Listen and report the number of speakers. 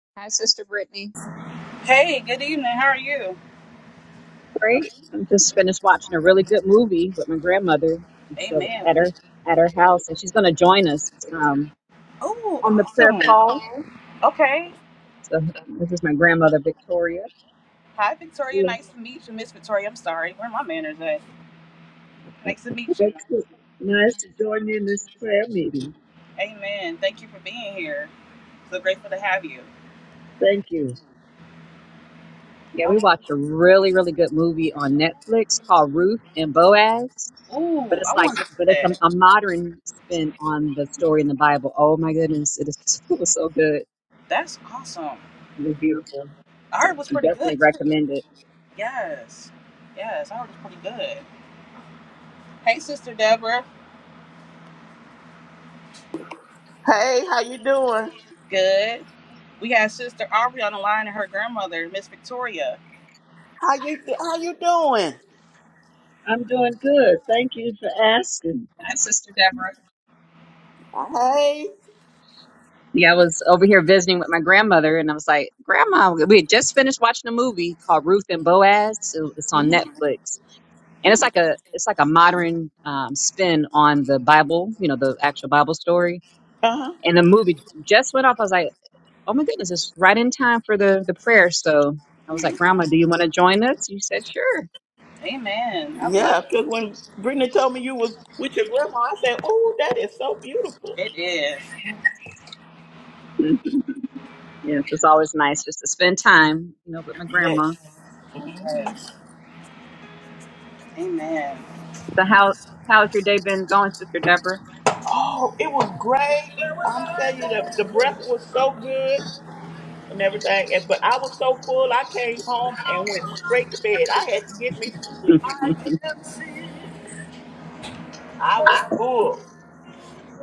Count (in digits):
3